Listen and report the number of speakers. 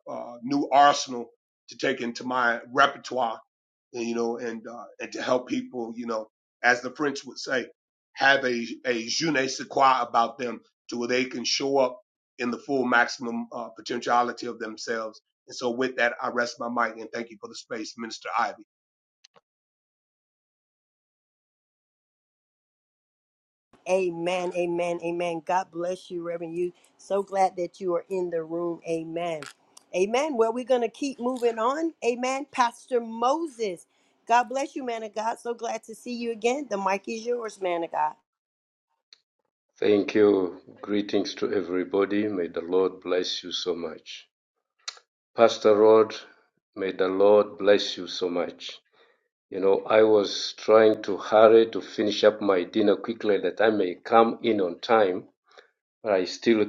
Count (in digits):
3